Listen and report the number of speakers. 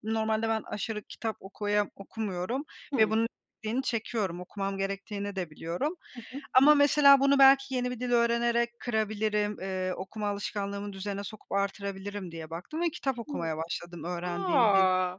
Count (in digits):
2